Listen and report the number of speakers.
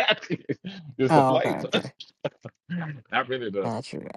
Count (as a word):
two